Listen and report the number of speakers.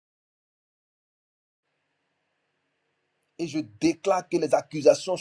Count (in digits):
1